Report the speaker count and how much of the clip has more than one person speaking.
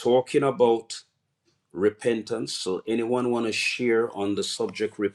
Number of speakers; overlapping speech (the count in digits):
1, no overlap